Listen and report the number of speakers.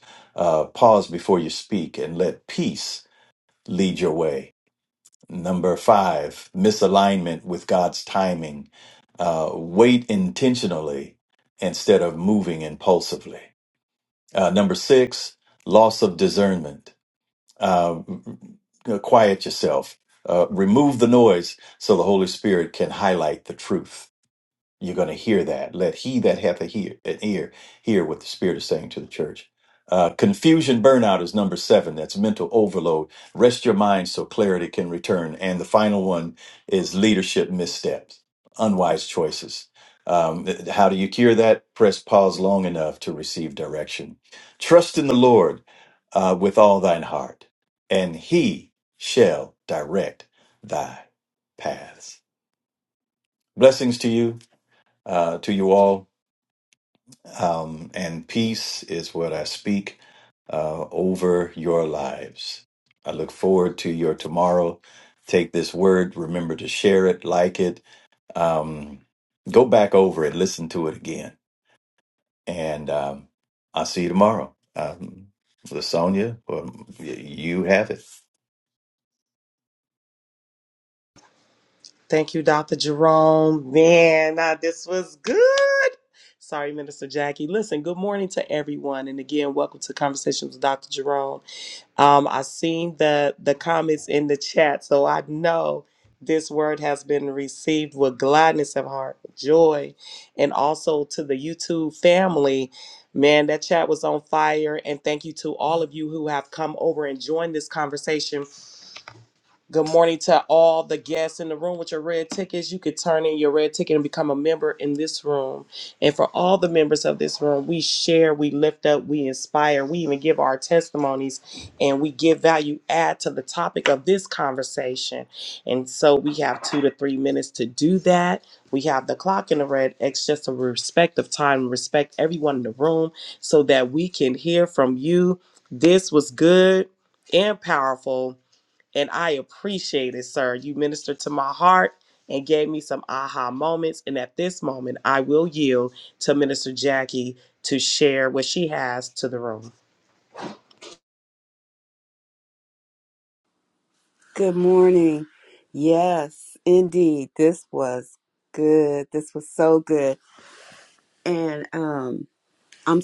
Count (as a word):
three